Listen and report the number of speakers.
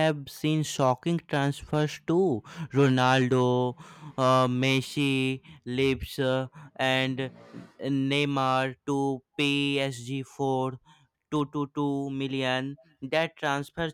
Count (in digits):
1